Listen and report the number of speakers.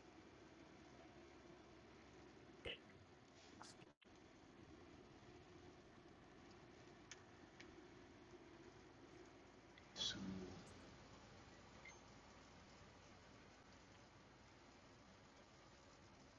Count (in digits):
0